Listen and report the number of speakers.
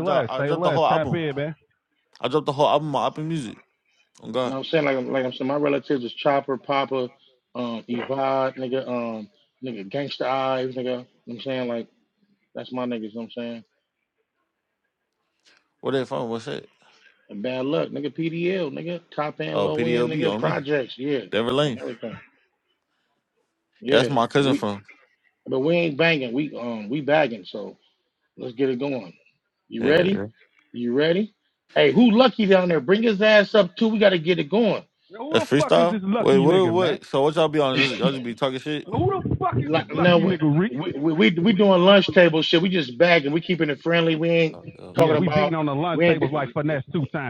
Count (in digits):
3